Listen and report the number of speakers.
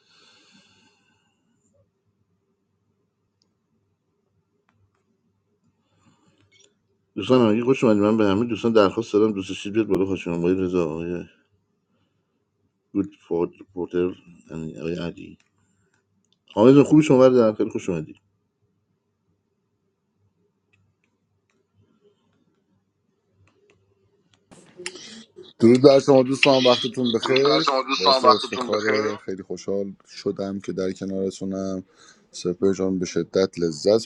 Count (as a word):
two